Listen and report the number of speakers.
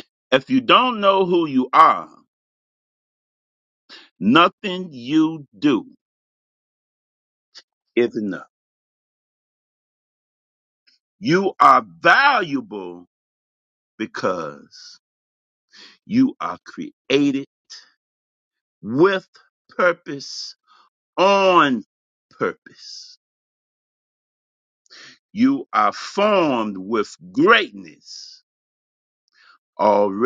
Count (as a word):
one